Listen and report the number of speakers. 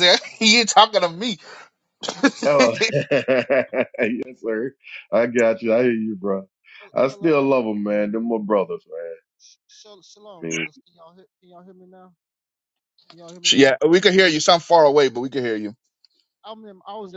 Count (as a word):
three